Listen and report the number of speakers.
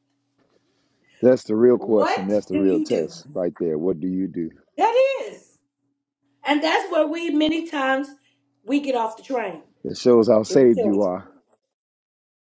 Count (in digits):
2